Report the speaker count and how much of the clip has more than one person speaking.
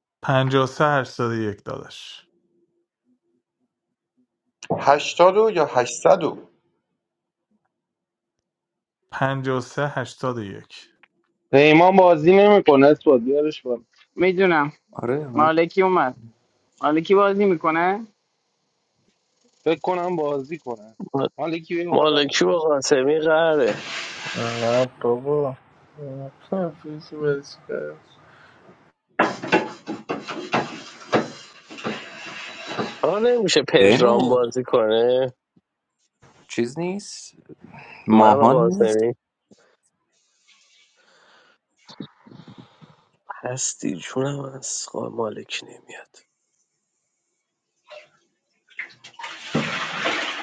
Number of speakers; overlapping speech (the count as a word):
seven, about 4%